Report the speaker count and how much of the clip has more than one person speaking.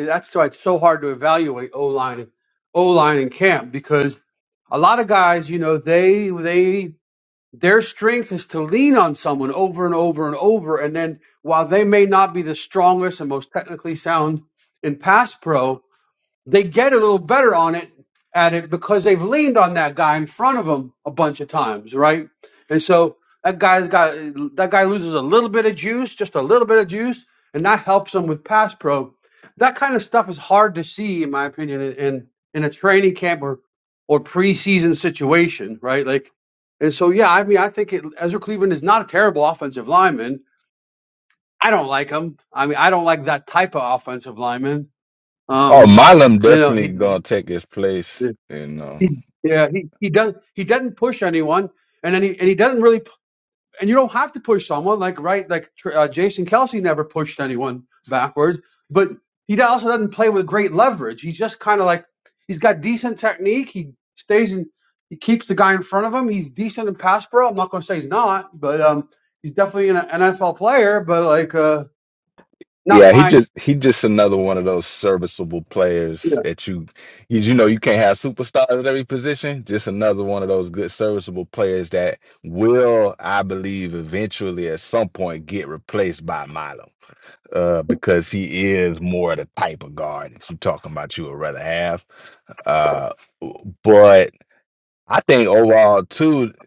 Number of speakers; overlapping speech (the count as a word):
two, about 1%